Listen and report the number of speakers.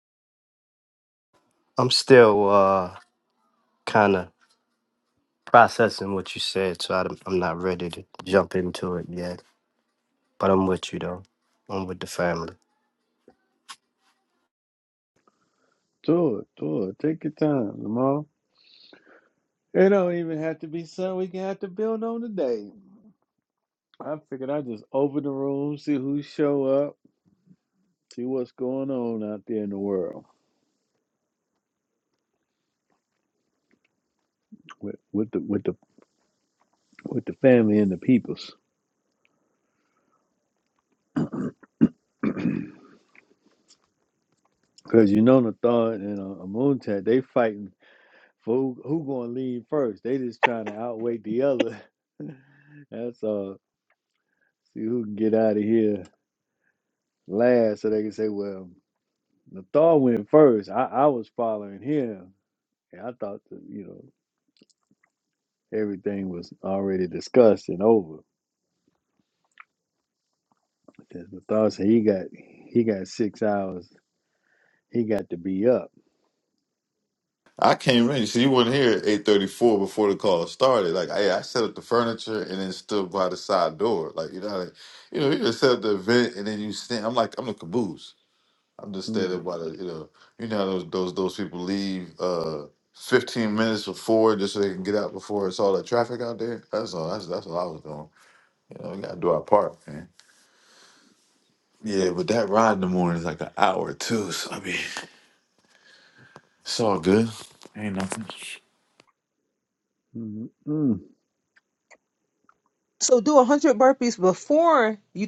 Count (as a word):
four